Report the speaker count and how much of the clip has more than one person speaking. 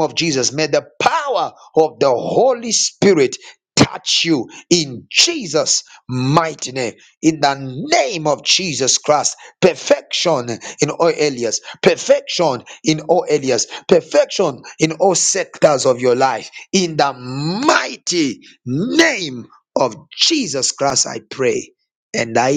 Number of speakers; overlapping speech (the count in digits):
1, no overlap